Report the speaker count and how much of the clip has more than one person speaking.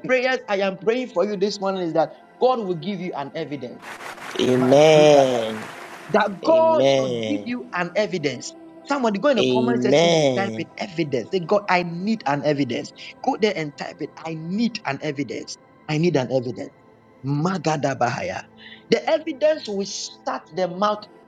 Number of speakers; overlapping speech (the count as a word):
two, about 10%